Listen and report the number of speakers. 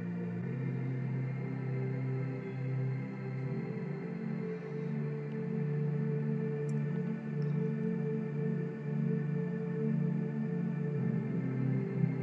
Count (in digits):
0